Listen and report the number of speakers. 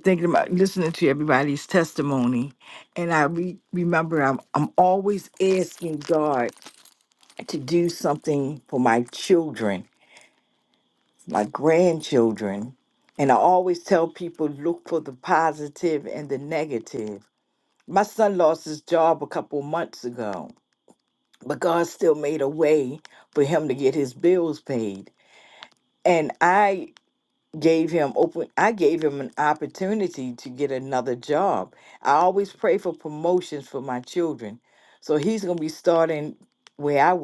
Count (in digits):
1